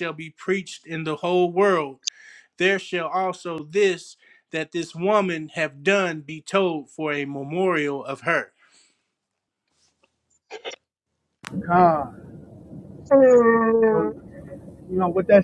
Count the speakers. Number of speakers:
three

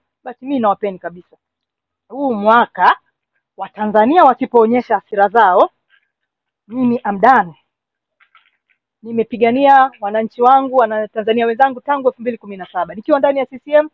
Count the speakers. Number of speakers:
one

